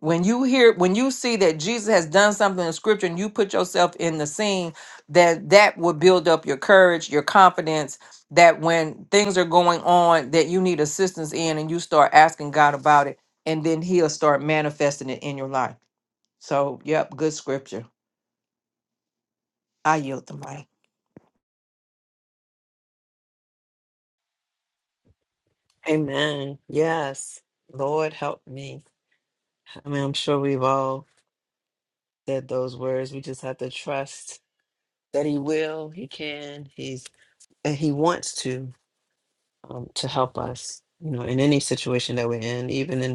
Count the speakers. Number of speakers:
2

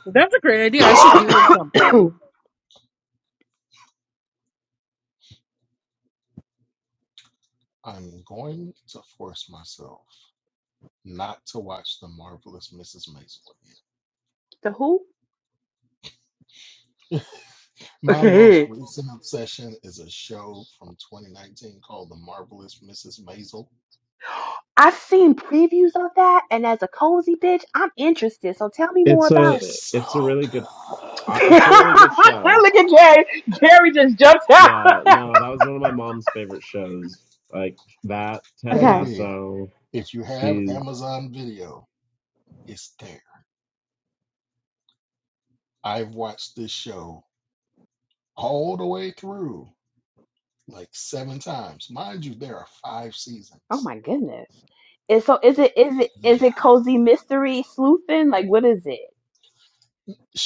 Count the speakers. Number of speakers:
4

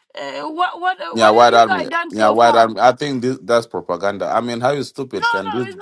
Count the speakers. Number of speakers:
2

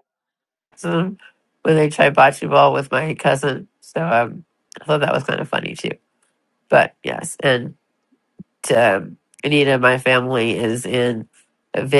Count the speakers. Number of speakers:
1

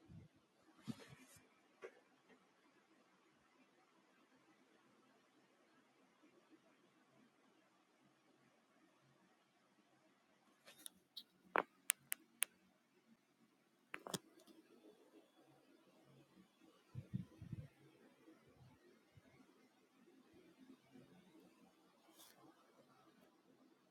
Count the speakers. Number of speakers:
0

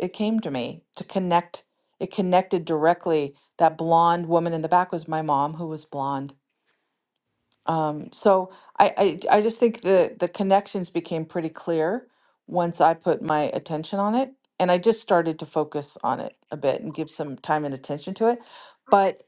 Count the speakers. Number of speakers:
1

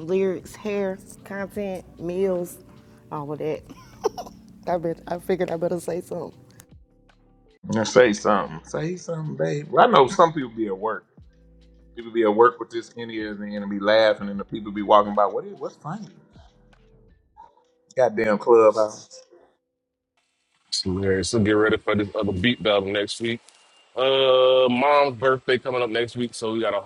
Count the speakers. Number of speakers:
3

